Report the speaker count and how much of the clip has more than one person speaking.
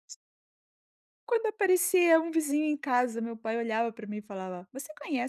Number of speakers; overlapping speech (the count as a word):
one, no overlap